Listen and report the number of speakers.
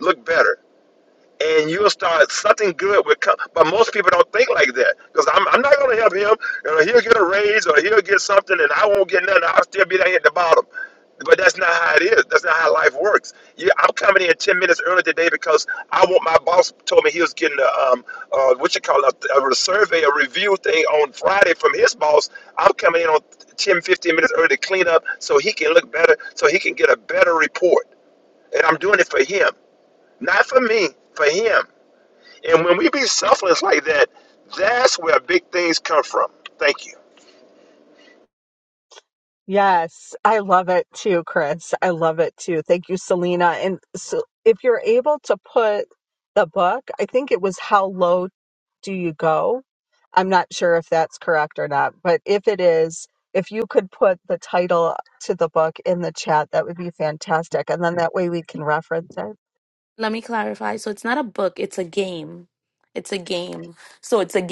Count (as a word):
three